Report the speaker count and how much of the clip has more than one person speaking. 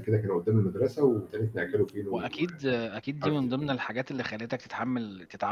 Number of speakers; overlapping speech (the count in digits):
2, about 7%